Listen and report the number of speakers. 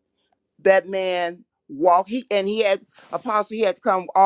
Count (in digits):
1